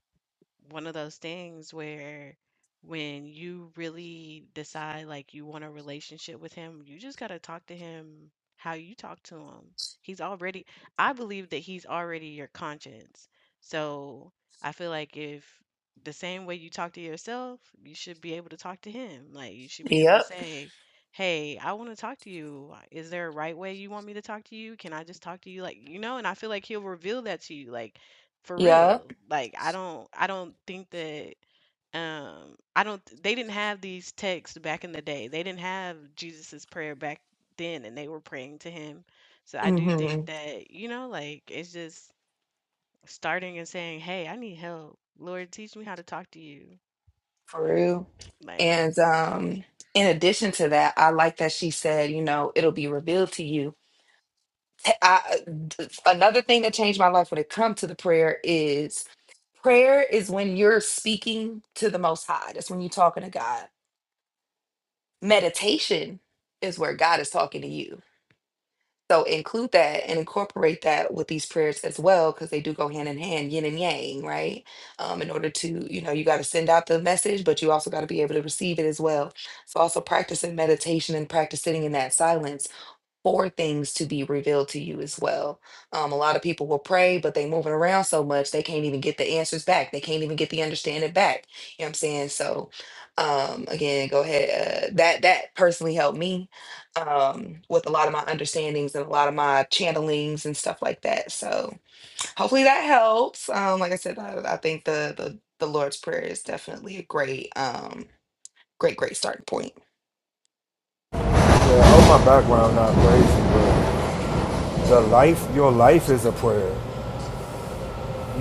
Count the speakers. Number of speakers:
3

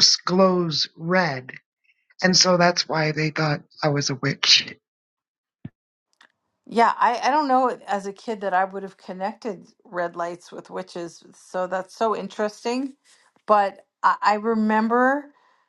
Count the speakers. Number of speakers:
2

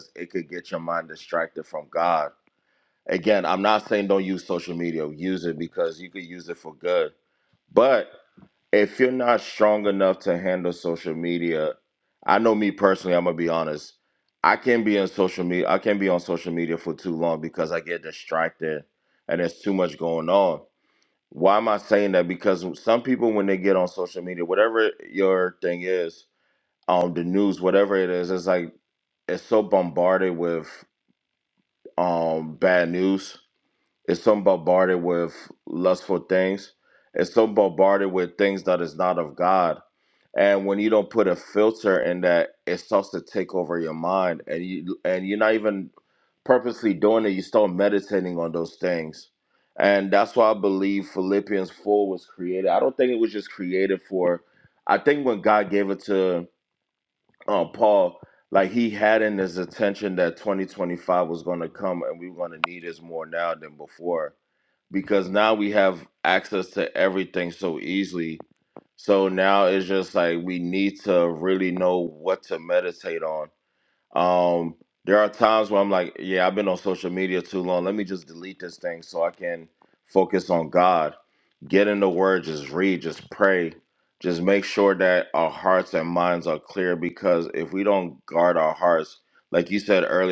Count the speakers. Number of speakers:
1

